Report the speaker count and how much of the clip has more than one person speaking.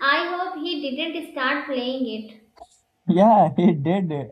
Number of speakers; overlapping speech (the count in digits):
2, no overlap